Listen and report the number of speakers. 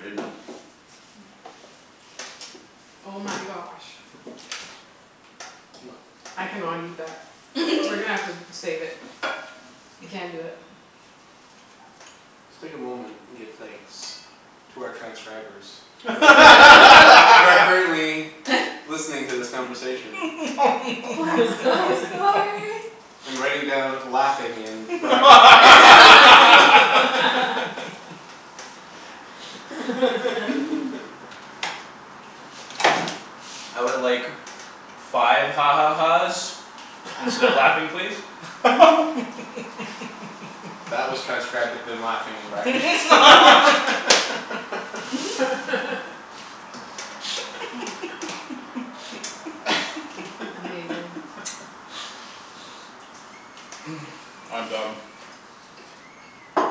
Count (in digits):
4